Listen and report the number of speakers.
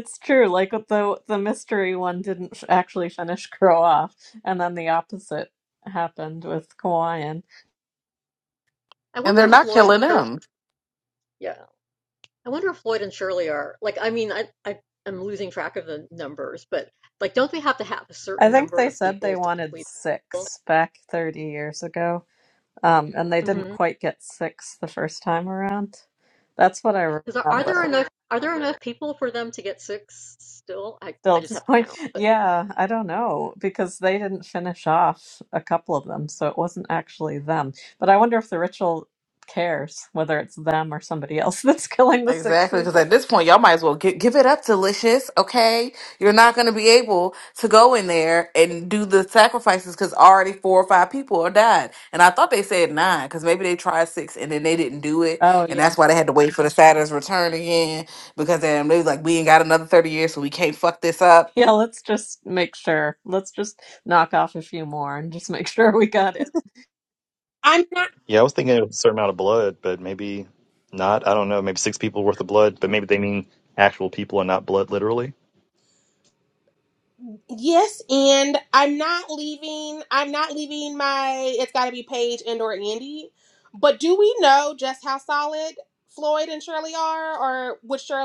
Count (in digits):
5